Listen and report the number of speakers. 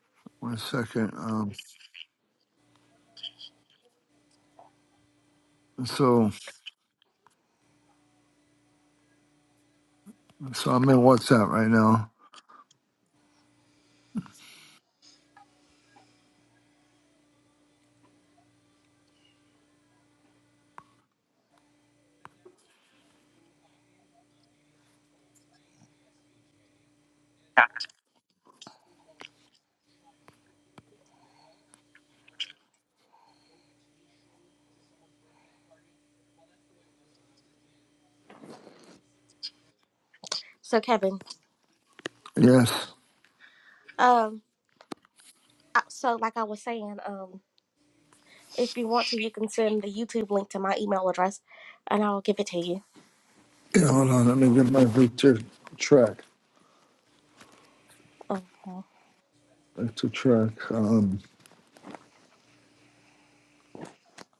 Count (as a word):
two